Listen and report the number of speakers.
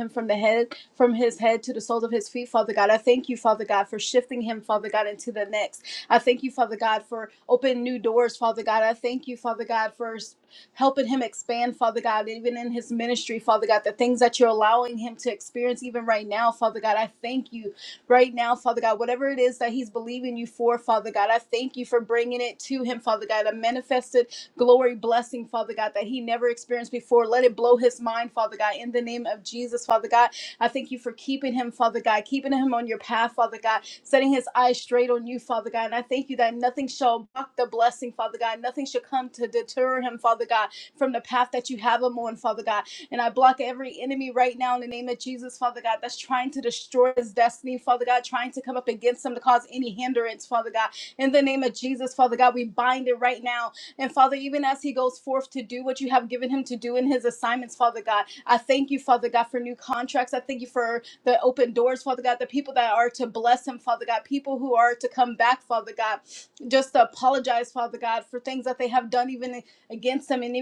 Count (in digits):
1